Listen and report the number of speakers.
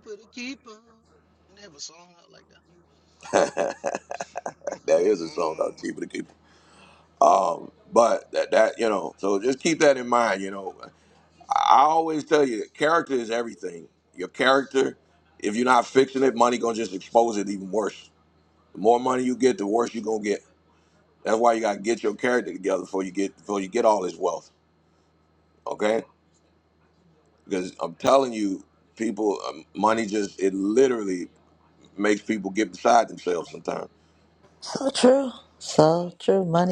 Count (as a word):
three